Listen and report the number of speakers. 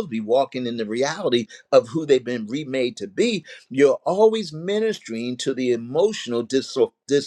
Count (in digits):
1